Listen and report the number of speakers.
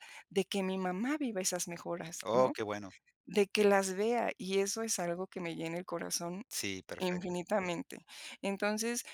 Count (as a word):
two